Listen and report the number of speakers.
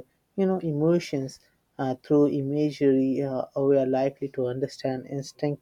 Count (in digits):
1